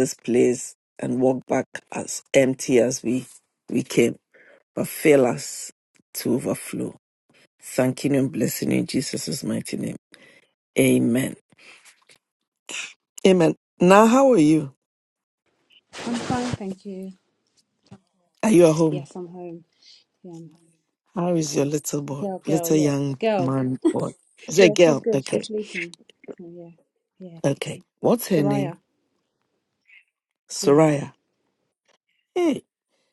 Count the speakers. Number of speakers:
2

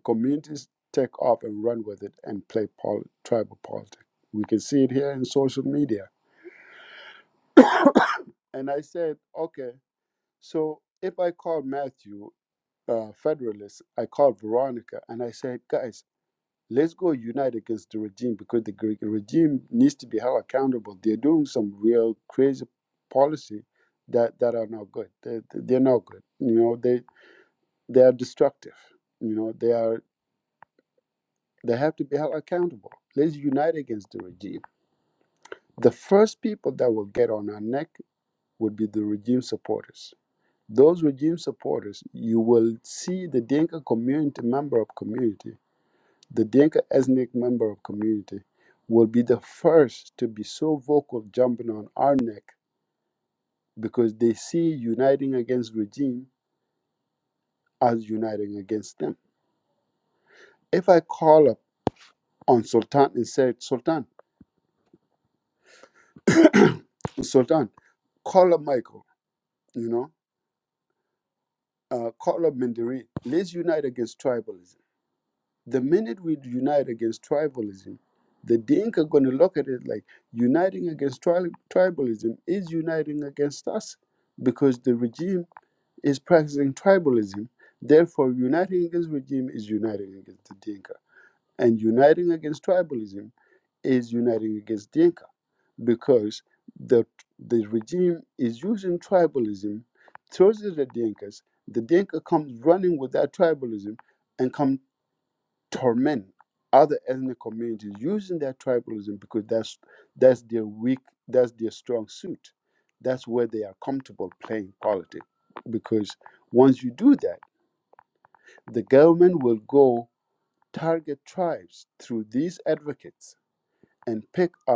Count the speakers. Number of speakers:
1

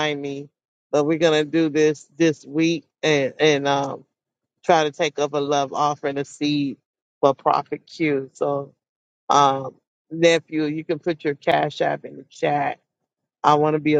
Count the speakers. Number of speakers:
1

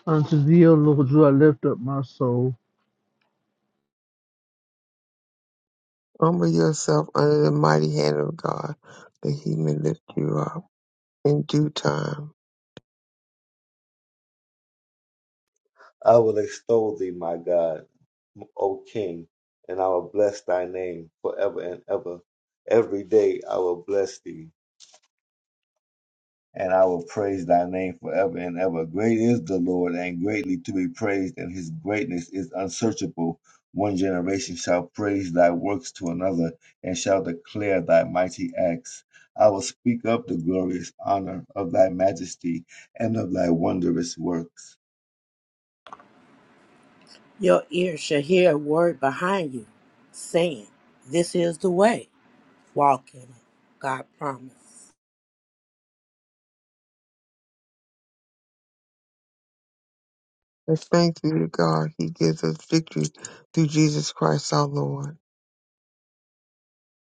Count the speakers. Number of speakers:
4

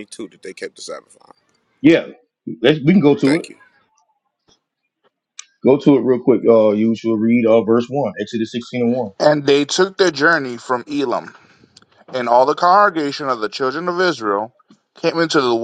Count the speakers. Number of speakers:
3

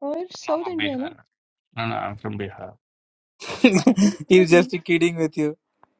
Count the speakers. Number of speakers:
3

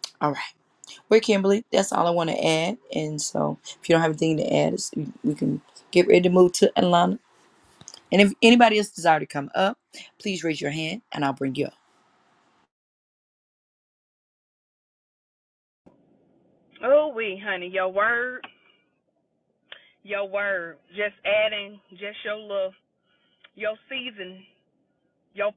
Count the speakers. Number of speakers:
2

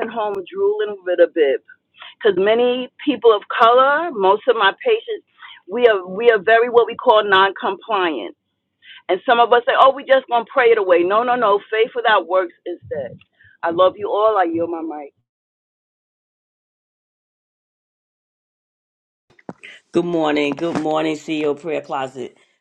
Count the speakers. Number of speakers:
2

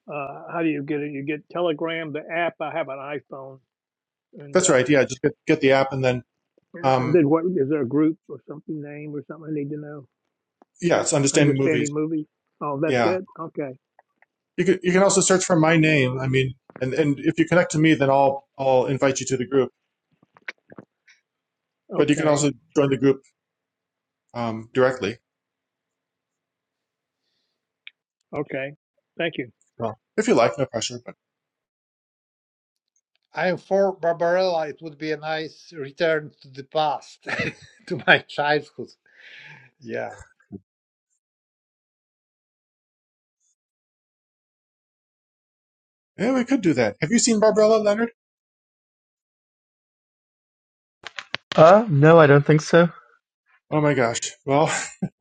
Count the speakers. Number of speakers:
4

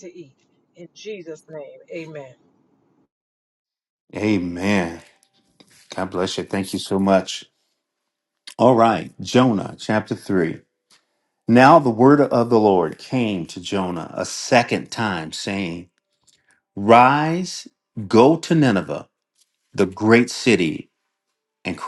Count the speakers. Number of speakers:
2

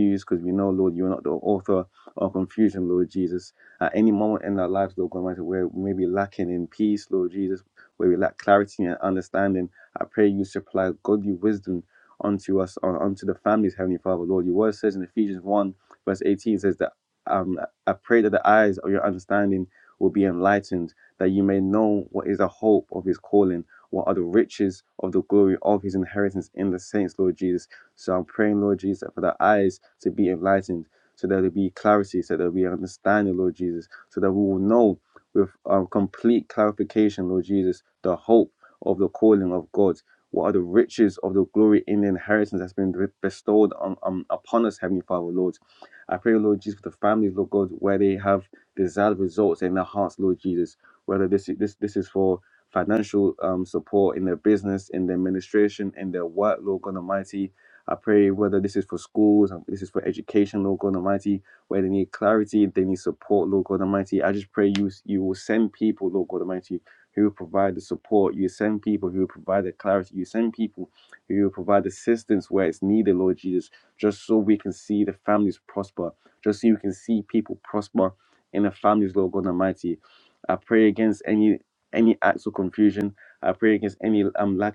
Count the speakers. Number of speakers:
1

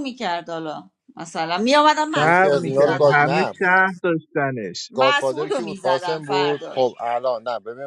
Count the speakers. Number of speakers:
3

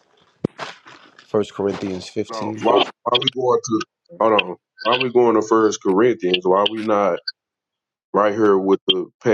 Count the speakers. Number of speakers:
2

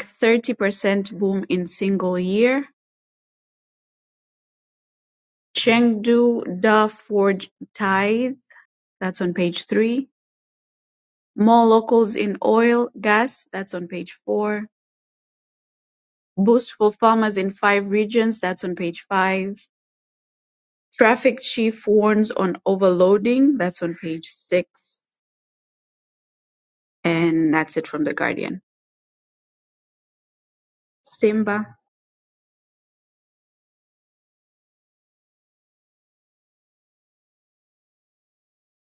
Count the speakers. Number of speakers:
1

